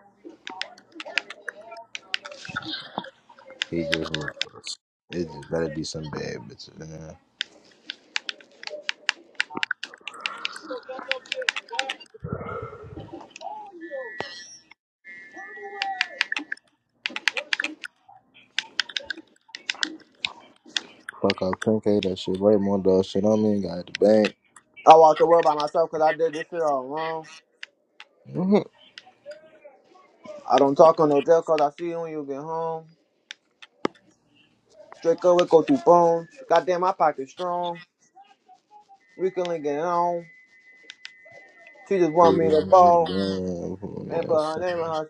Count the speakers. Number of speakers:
2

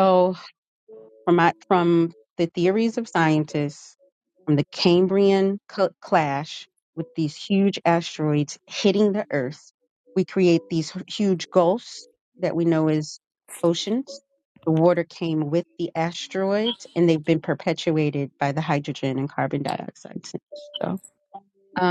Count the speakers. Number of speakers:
1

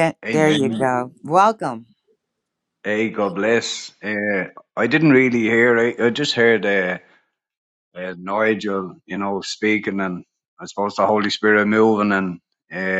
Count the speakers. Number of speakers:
2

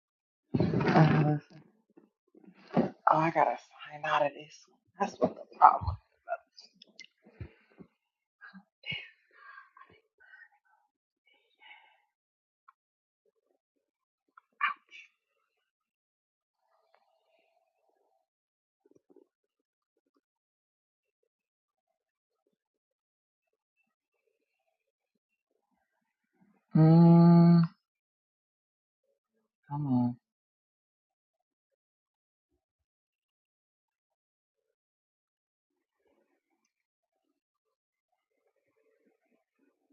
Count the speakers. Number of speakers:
1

